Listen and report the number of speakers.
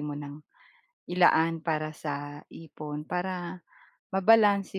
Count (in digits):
1